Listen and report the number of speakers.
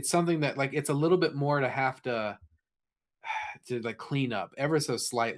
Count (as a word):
one